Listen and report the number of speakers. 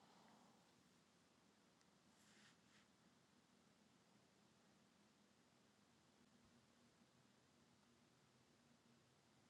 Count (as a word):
zero